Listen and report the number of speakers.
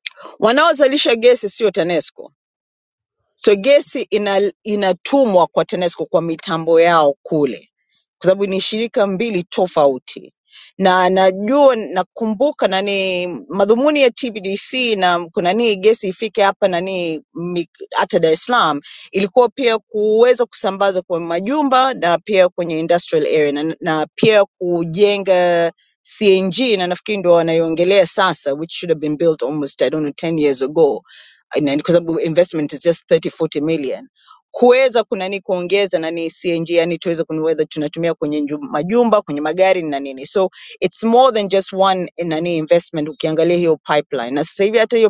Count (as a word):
one